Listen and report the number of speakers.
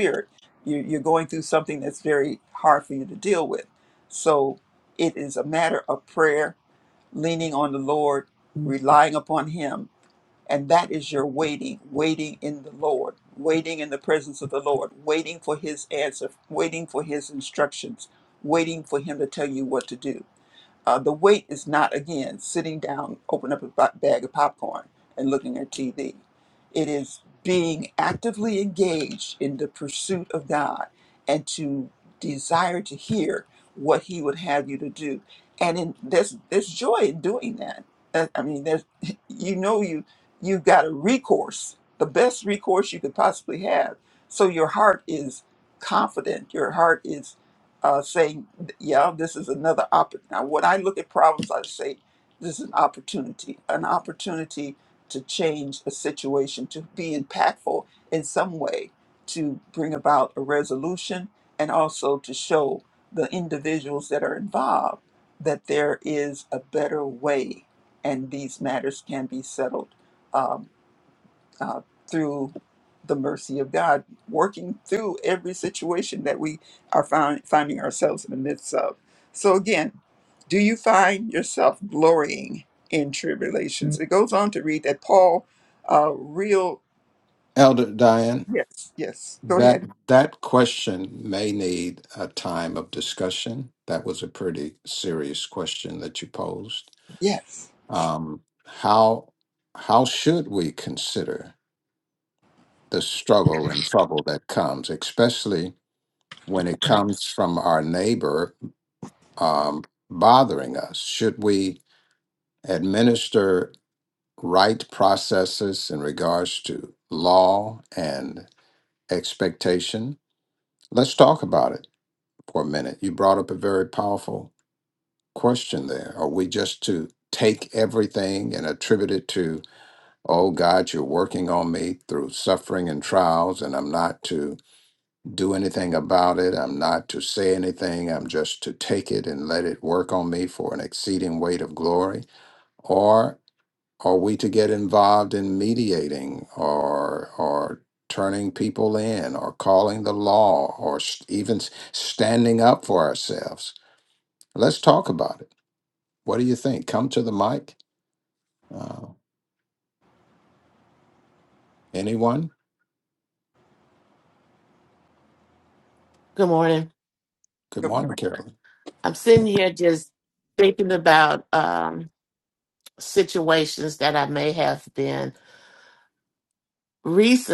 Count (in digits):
3